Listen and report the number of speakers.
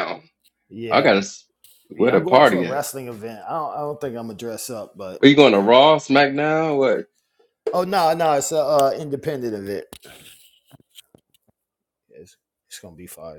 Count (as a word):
two